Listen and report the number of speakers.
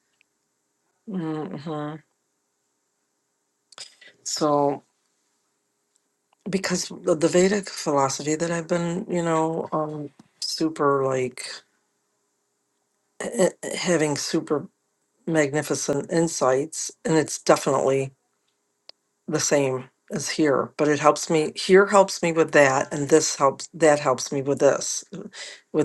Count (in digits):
1